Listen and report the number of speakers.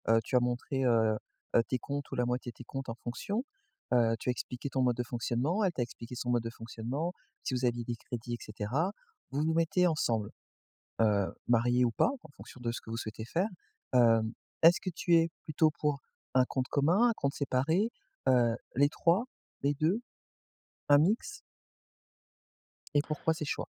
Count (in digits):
1